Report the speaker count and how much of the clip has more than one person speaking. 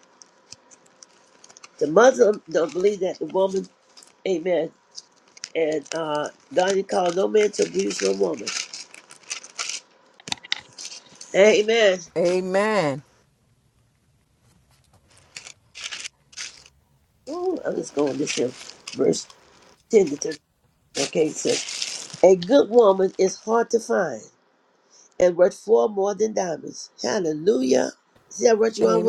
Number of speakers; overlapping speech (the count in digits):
2, about 1%